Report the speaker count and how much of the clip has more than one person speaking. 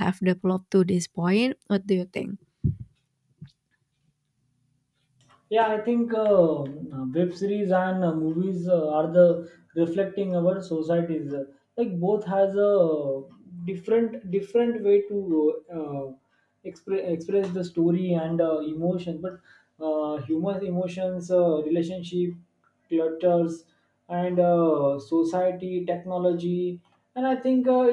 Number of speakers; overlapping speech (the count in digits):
2, no overlap